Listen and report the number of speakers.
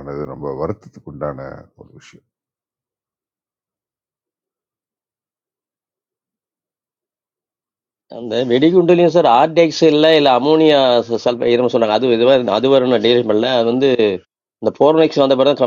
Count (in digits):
2